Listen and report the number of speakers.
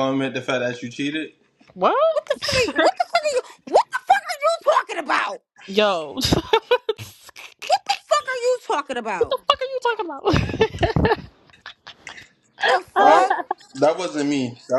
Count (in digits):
3